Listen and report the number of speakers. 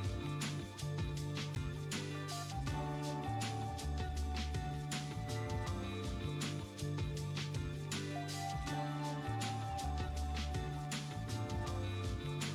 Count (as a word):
zero